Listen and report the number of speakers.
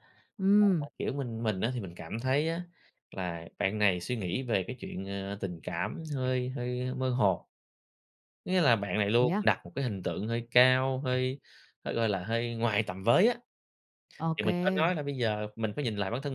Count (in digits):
2